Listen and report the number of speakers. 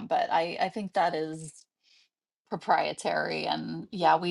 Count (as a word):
one